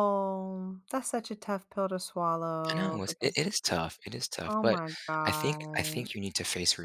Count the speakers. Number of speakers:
2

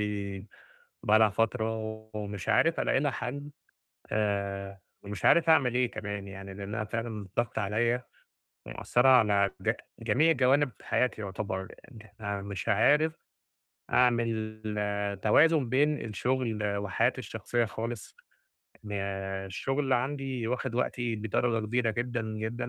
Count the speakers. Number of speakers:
1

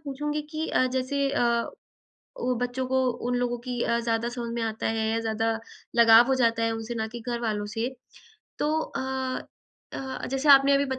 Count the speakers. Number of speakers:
1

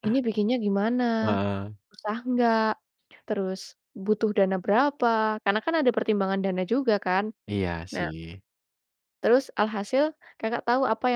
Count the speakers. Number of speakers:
2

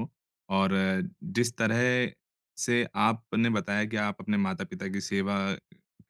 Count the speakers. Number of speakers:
1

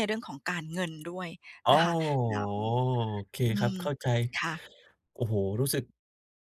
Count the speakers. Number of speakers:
2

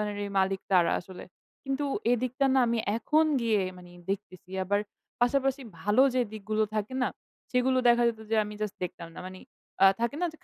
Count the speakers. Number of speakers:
1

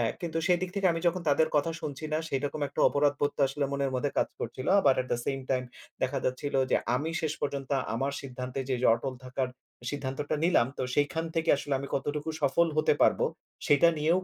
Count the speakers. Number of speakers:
1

